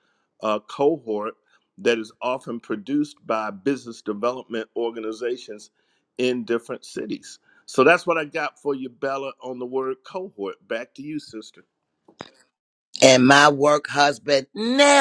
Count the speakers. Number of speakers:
2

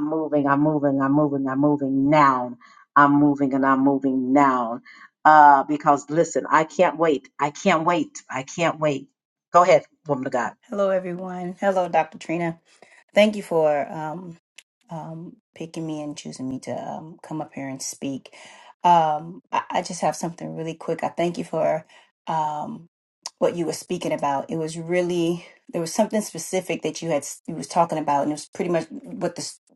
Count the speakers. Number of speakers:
2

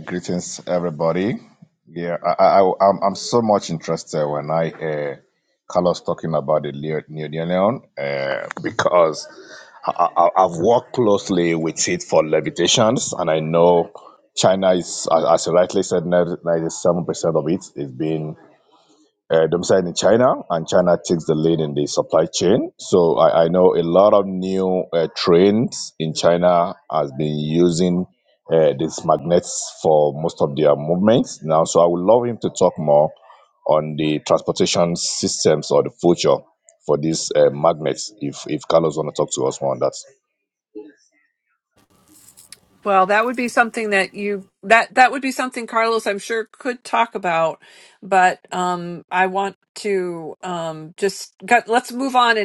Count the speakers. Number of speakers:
2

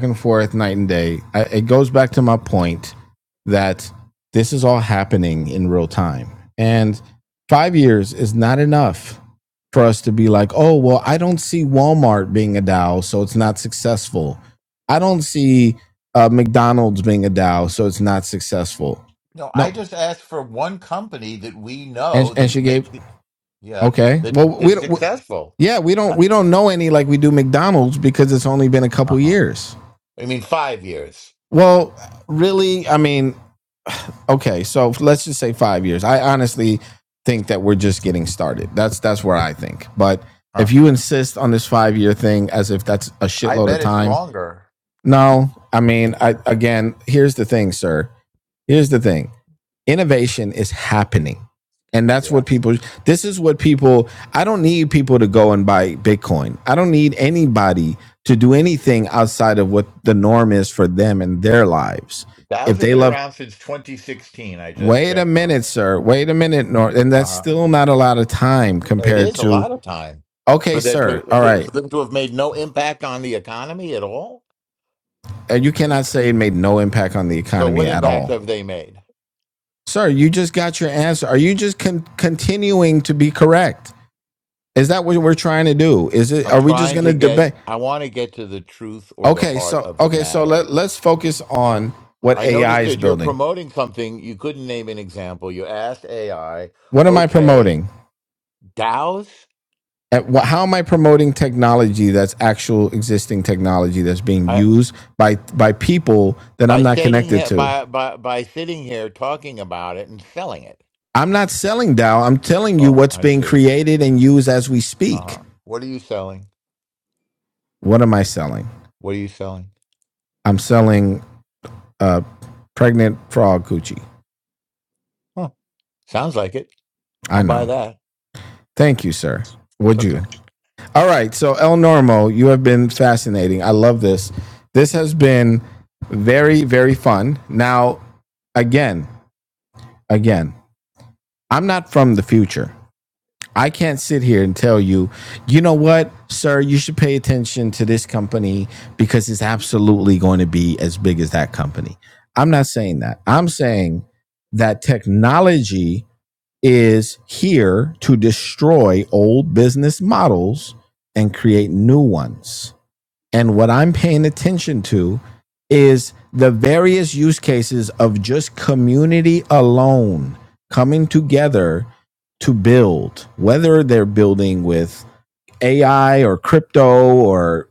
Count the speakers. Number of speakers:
2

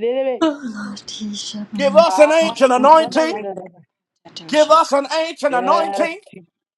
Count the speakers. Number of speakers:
3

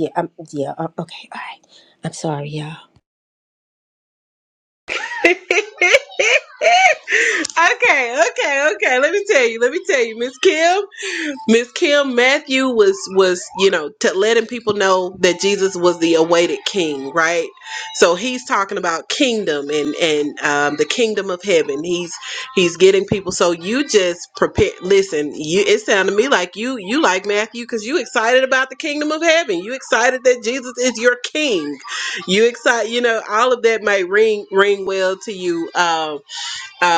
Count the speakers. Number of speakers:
2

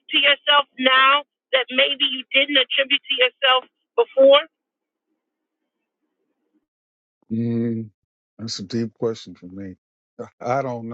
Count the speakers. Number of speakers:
2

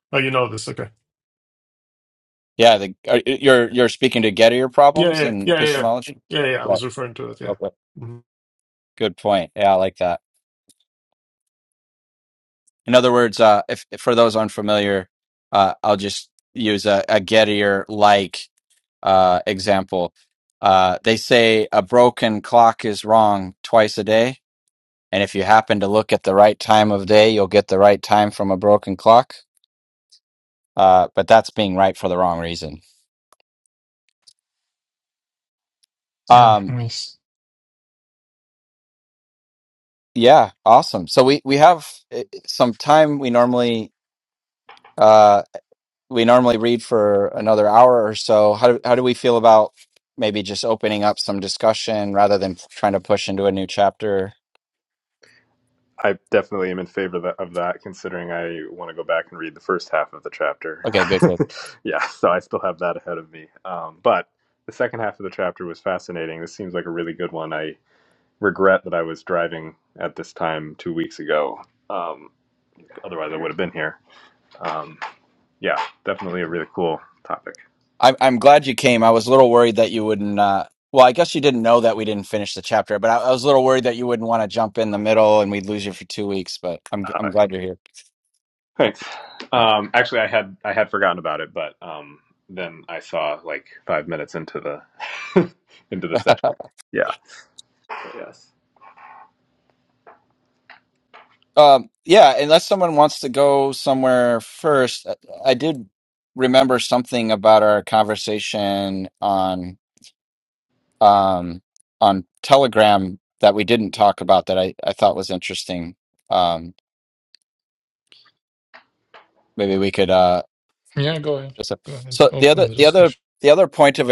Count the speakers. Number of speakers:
4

